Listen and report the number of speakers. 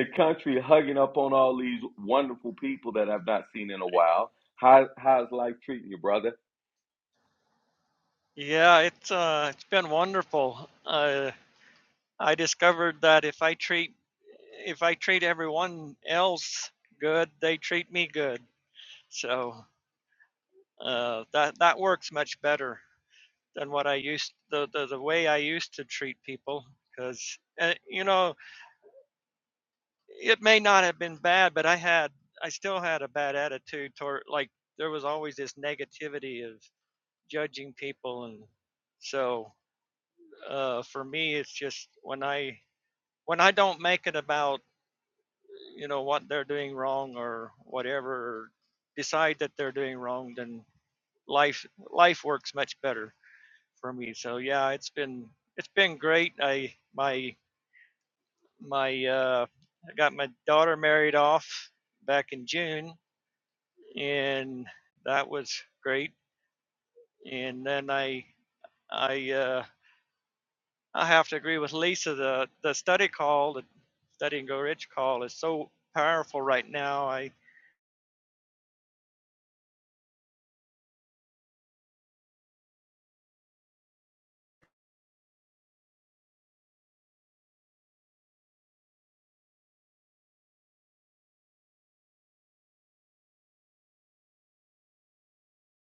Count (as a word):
two